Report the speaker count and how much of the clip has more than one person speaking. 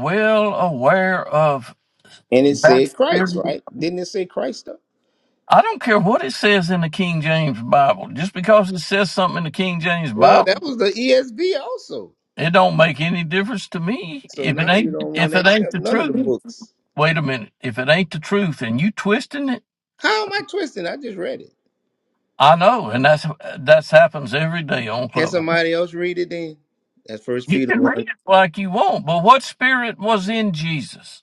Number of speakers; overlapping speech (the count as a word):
two, about 13%